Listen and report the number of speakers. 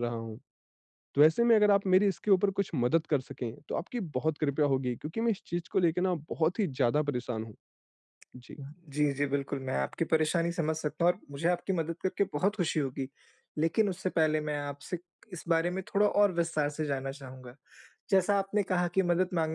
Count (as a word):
two